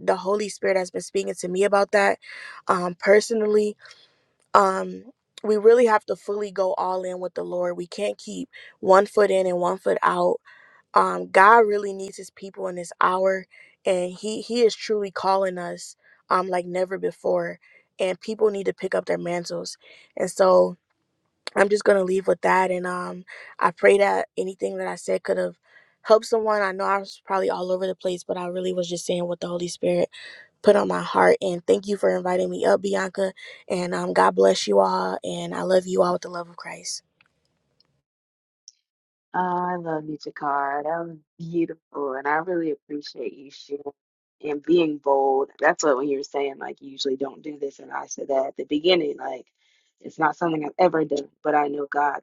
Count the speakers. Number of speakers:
2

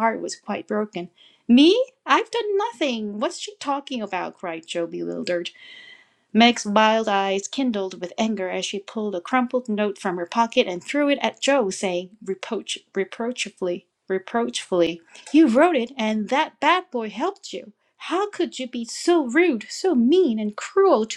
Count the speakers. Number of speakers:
1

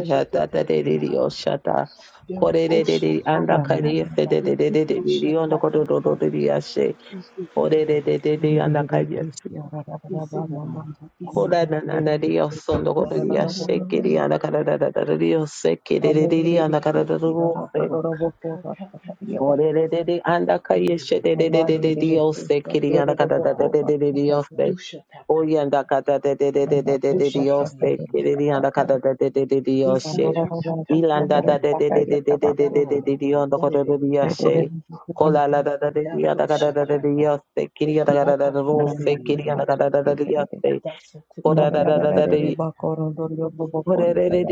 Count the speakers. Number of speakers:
3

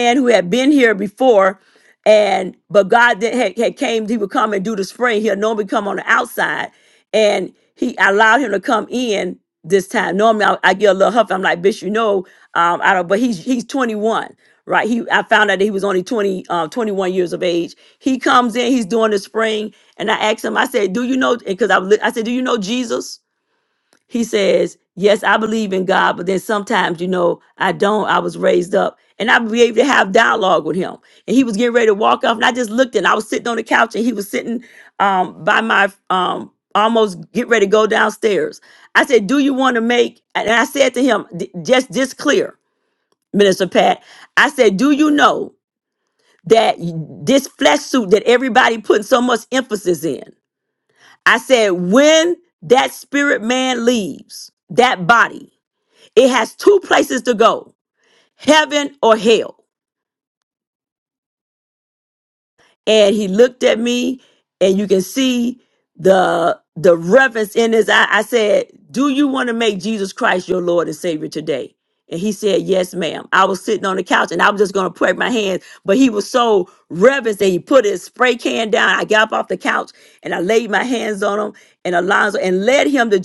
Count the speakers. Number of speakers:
1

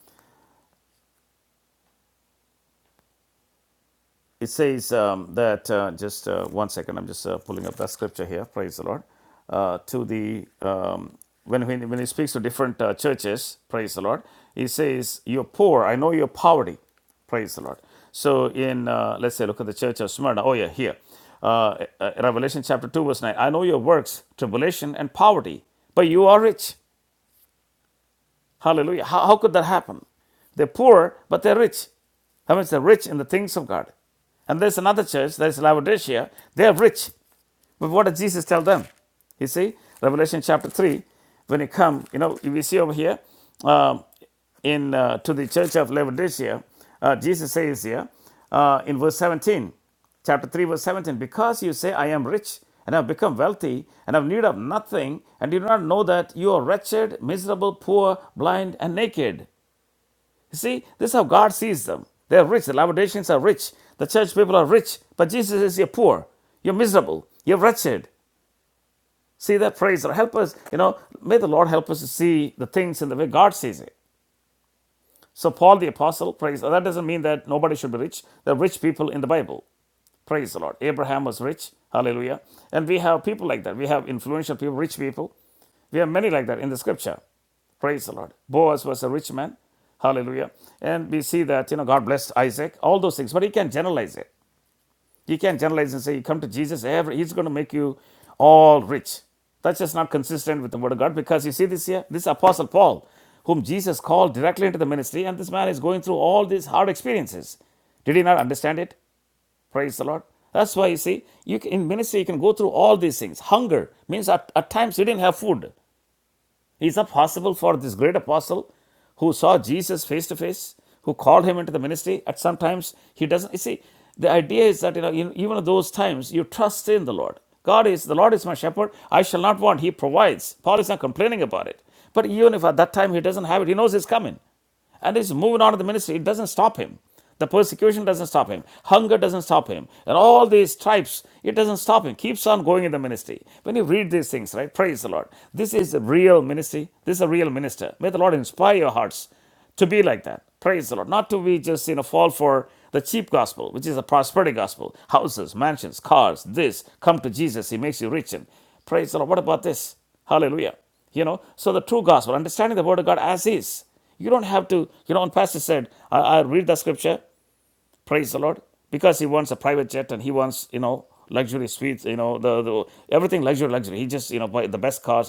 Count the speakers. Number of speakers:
1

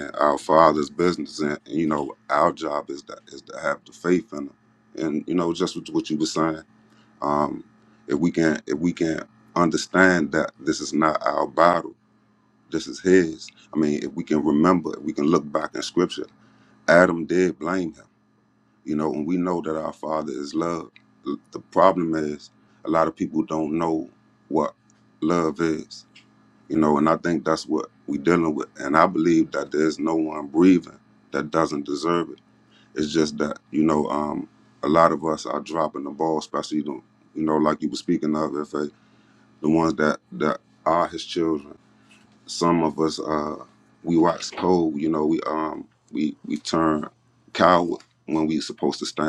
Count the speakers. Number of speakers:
1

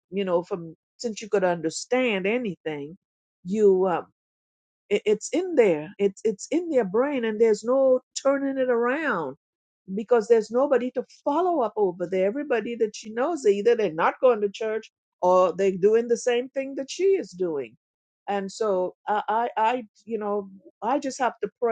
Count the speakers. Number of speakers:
1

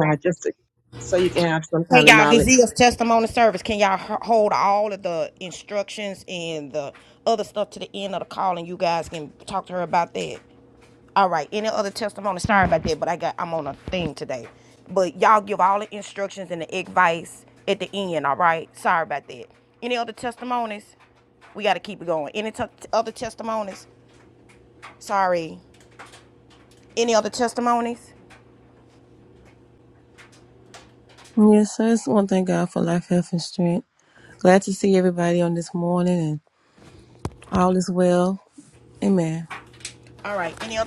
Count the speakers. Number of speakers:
3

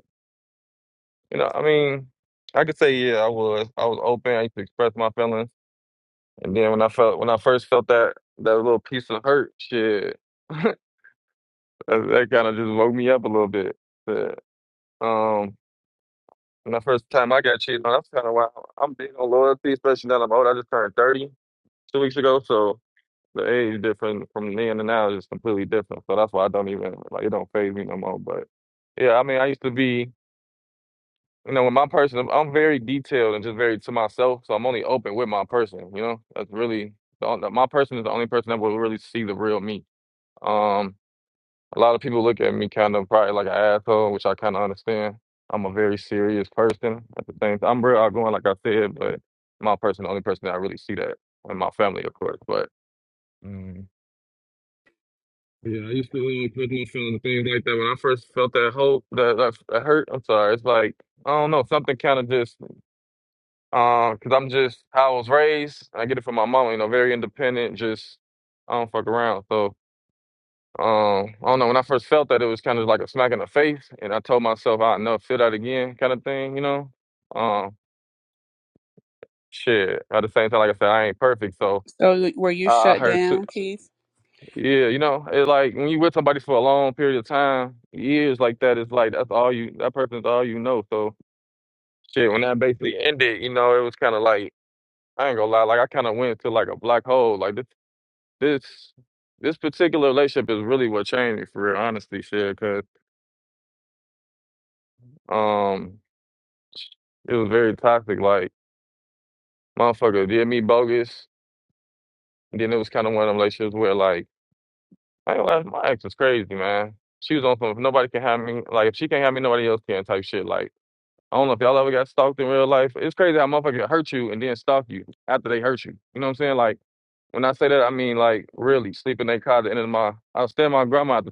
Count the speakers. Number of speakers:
2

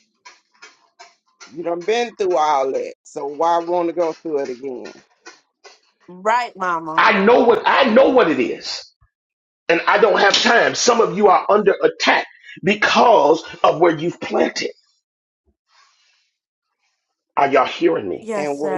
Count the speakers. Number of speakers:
3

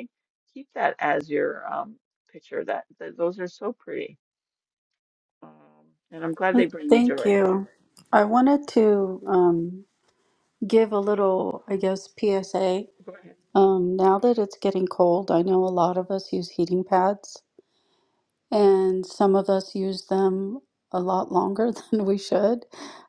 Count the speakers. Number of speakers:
2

